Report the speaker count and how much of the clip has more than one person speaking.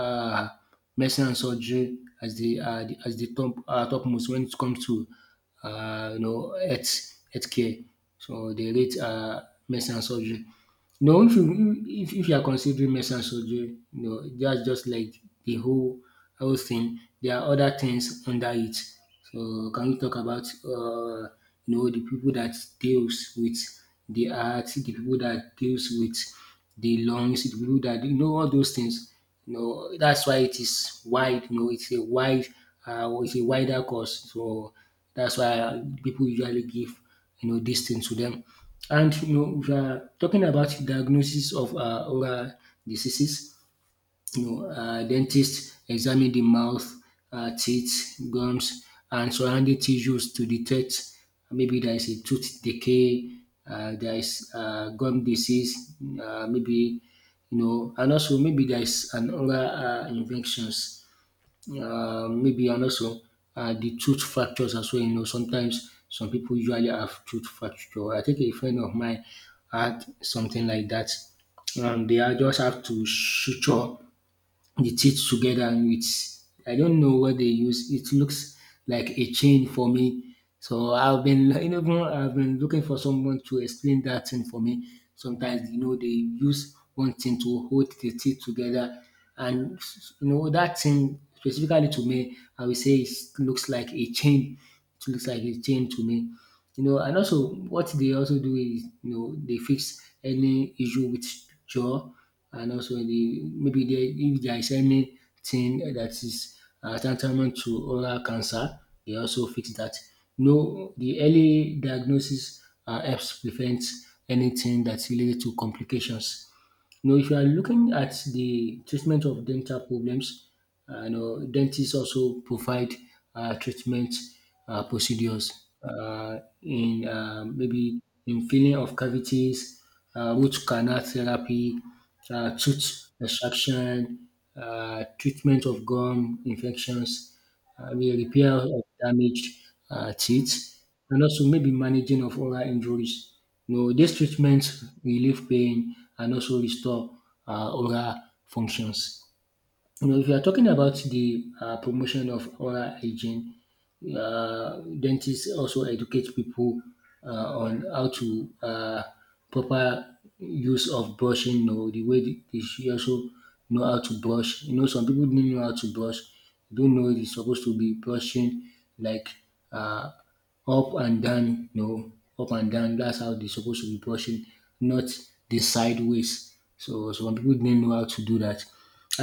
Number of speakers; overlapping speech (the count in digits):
1, no overlap